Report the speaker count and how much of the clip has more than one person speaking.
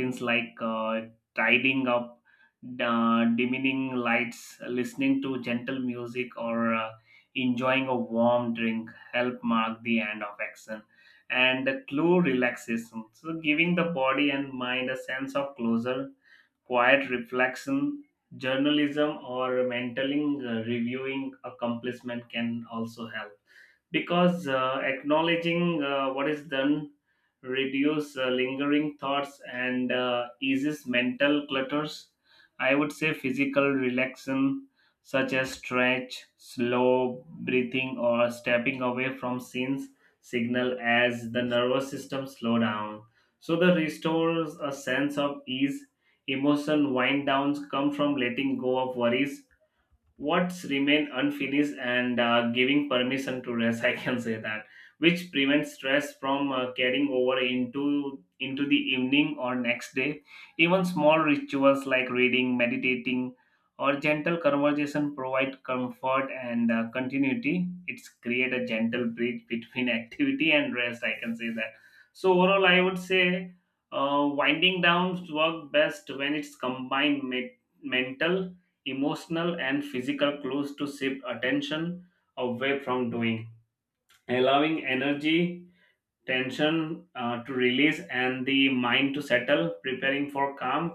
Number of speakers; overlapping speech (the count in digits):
1, no overlap